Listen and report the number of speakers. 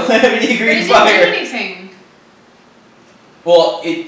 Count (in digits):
2